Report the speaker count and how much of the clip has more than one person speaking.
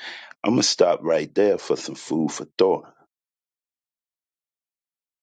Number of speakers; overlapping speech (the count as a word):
one, no overlap